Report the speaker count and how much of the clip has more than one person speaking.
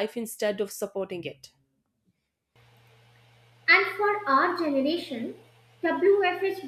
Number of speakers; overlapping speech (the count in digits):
2, no overlap